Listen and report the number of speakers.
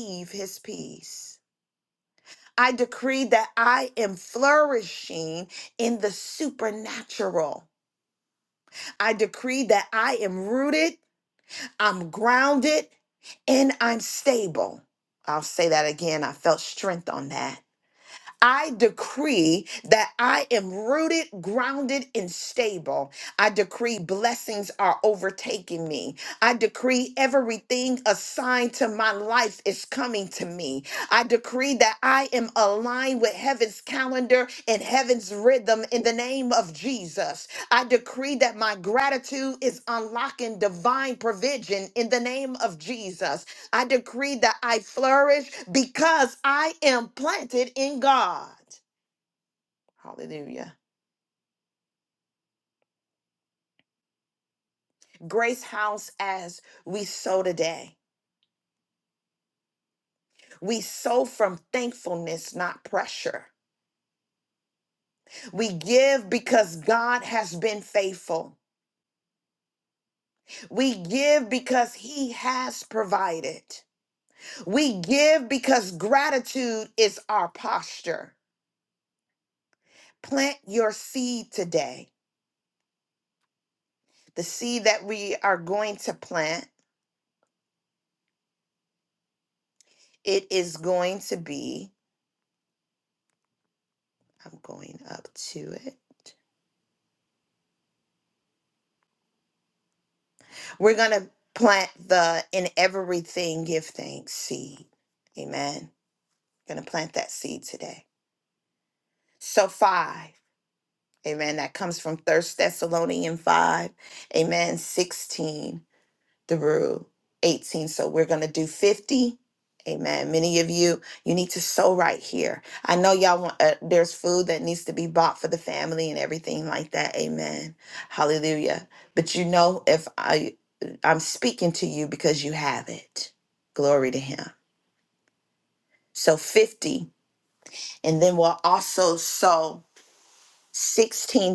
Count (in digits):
1